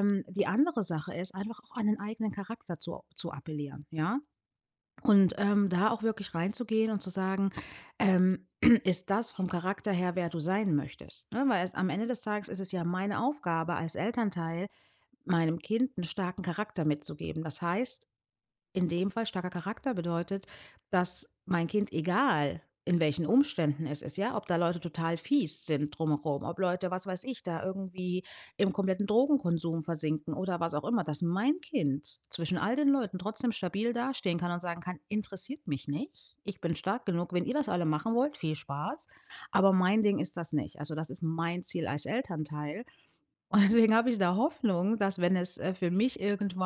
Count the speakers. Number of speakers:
1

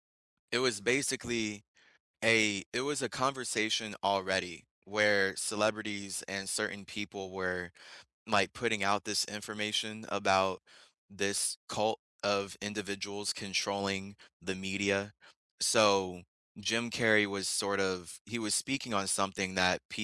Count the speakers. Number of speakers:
1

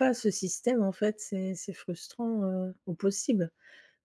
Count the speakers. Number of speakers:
1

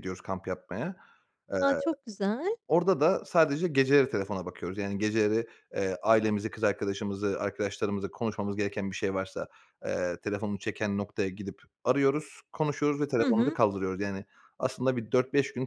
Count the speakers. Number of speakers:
2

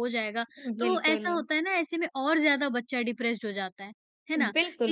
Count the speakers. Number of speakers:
2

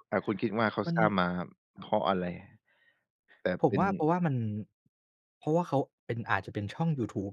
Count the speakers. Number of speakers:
2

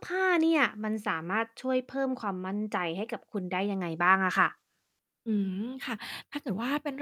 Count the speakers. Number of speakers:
2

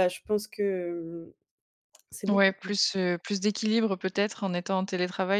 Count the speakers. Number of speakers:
2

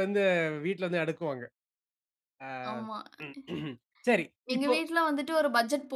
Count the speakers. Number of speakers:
2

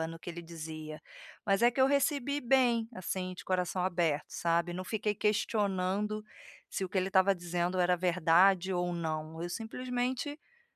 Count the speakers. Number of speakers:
1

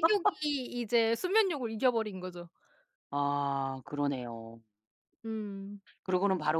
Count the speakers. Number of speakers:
2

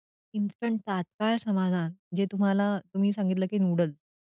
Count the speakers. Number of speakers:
1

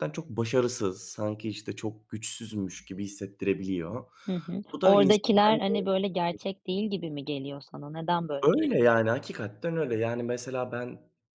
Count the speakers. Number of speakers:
2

